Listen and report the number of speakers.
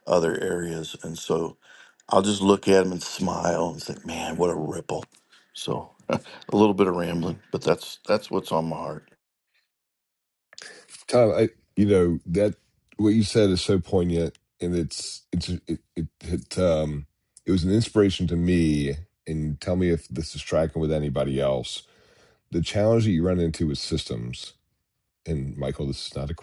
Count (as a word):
two